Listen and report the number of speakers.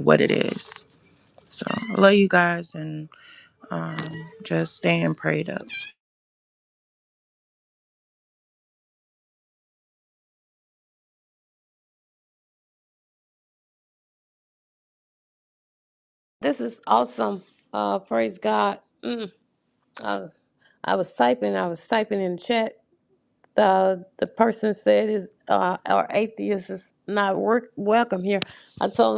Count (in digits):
2